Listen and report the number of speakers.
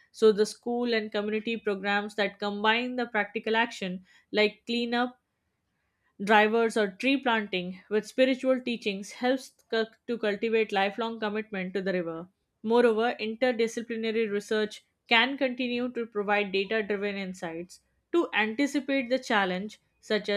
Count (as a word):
one